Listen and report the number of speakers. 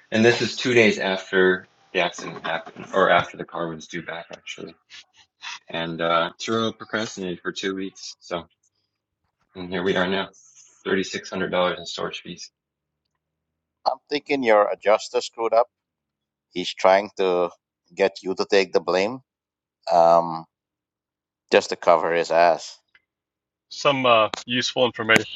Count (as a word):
three